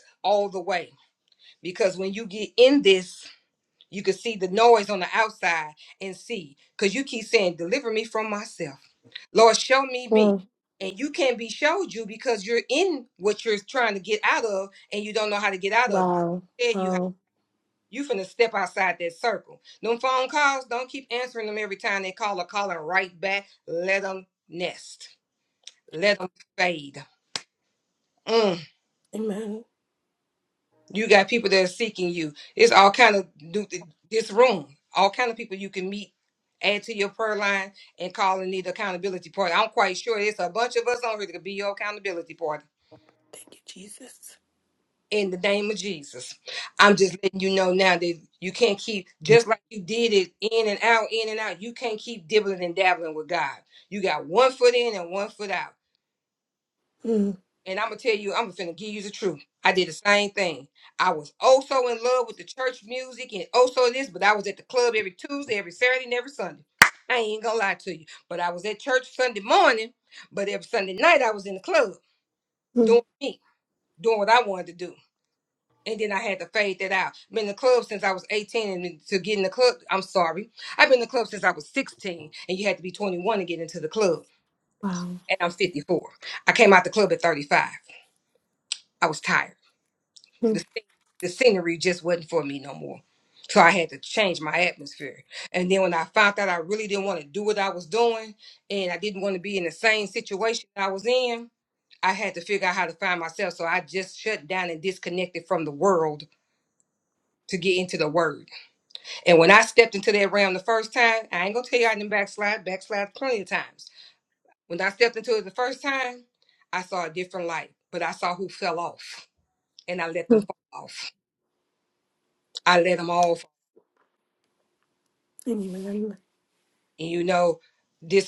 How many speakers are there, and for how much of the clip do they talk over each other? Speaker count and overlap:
two, about 1%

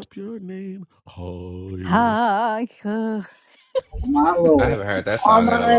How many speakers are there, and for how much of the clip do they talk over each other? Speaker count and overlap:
four, about 18%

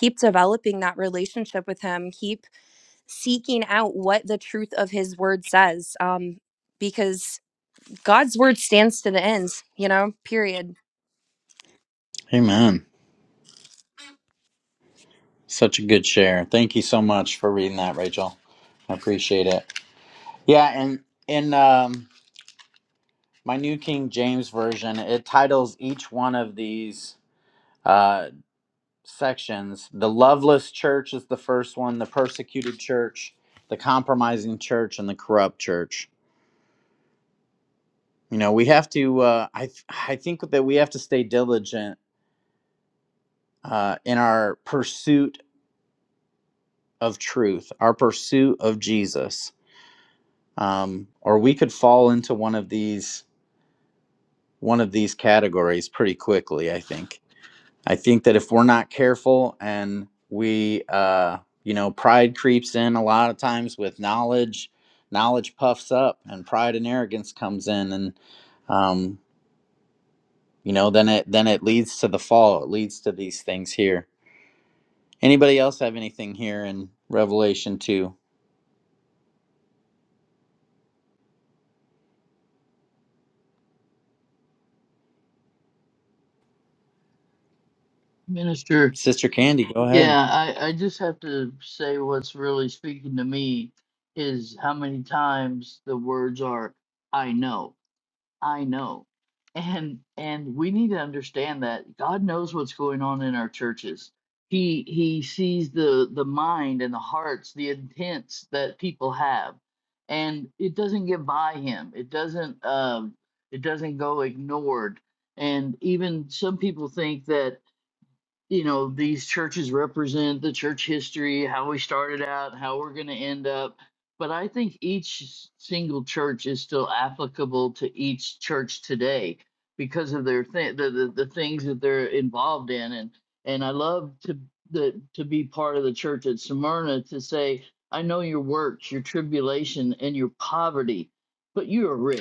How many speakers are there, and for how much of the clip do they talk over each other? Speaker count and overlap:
three, under 1%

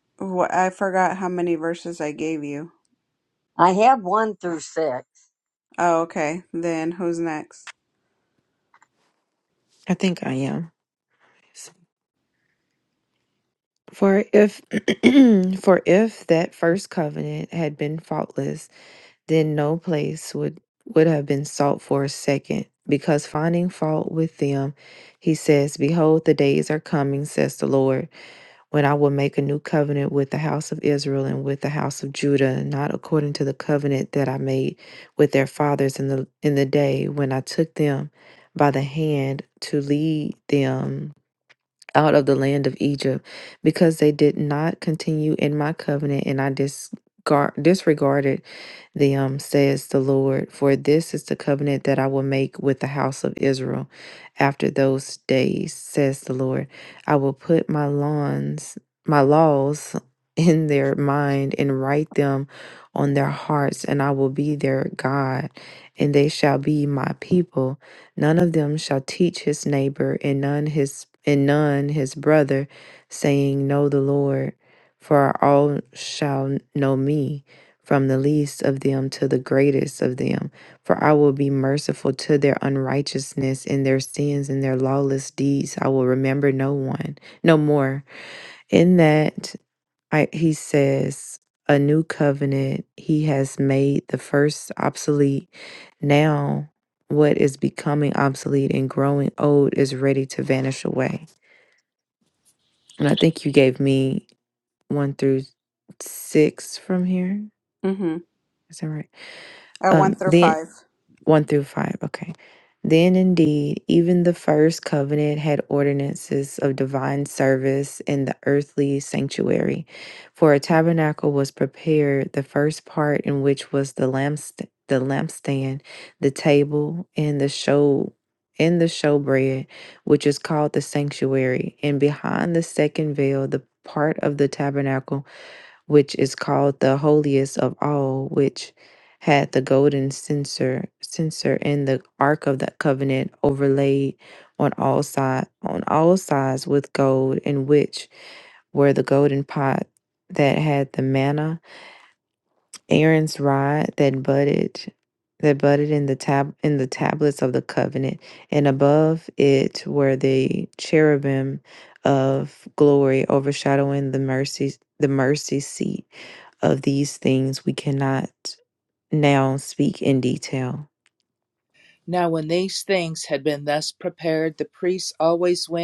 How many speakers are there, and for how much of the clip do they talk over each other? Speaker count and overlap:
four, under 1%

